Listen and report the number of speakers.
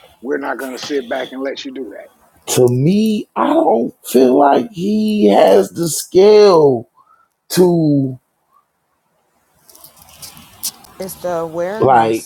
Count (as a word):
three